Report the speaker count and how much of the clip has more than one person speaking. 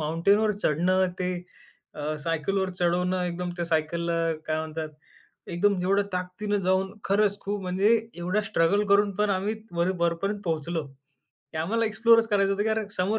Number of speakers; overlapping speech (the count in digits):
1, no overlap